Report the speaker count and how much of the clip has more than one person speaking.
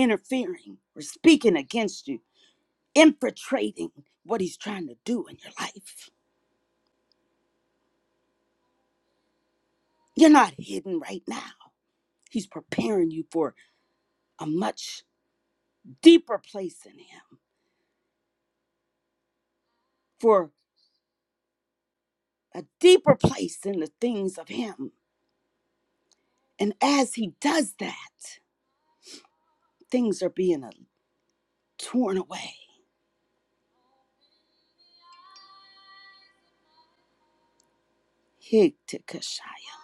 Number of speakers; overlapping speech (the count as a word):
one, no overlap